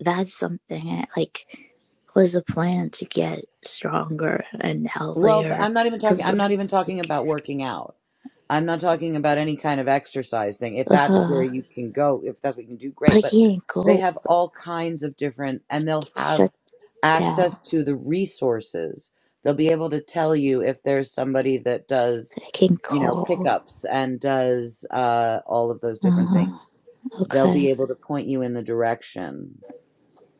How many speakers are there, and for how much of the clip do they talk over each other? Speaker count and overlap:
two, about 17%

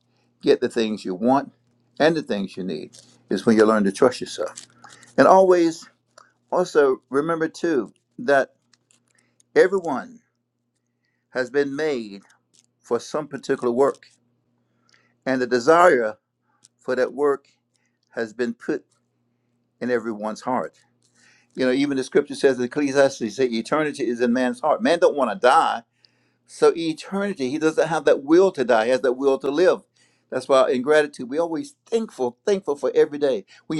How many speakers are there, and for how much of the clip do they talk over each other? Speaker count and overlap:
one, no overlap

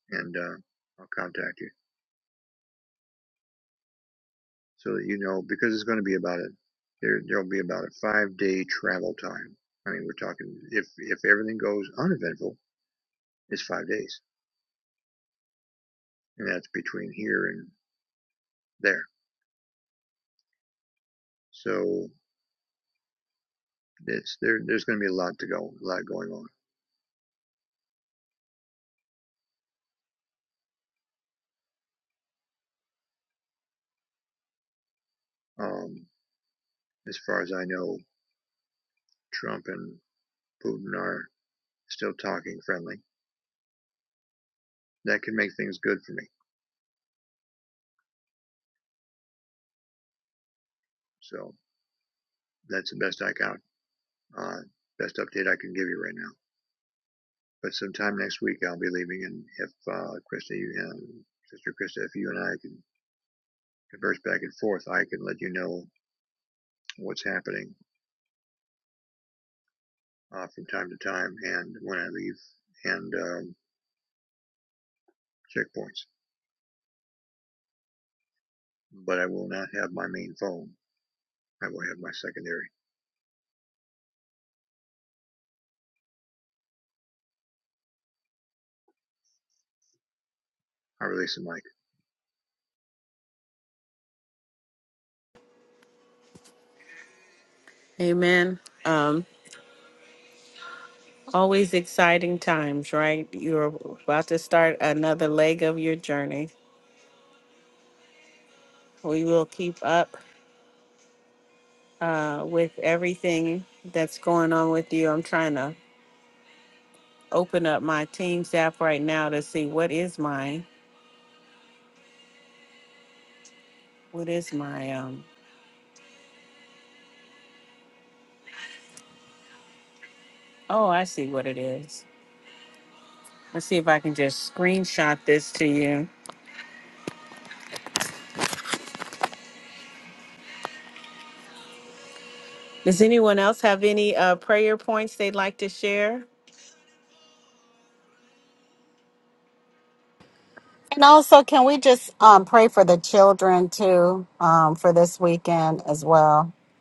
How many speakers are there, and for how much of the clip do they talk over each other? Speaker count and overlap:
three, no overlap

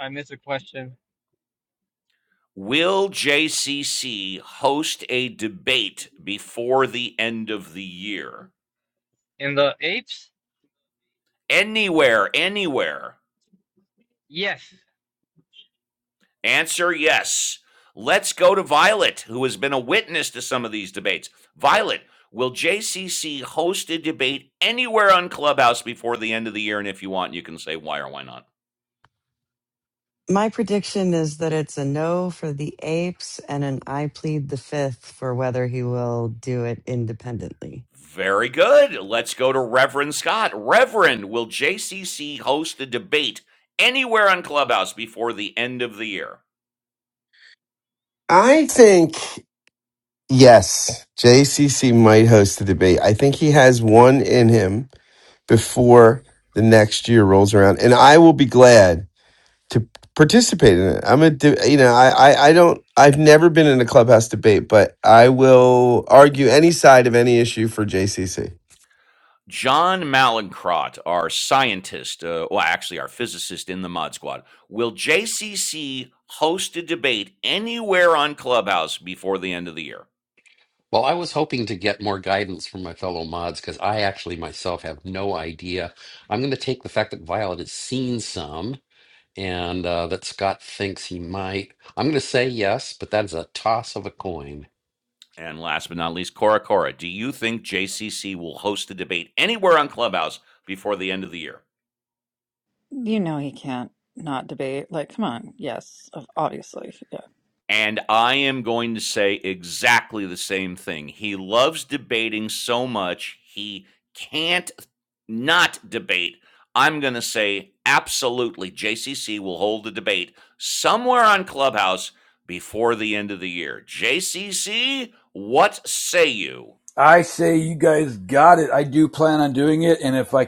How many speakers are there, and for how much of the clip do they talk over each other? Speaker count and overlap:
seven, no overlap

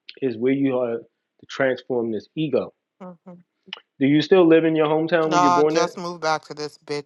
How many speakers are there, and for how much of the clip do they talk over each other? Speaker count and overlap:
two, about 10%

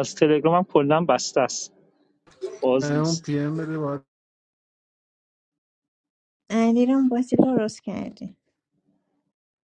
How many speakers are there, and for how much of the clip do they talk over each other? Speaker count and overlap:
three, about 2%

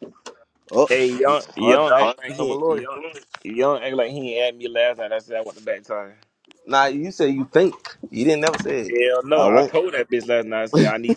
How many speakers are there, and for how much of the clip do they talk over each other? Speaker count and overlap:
two, about 12%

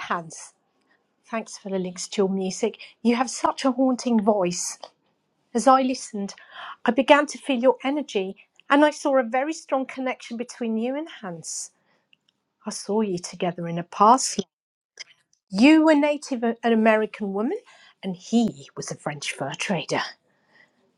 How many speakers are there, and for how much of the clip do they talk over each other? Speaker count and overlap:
one, no overlap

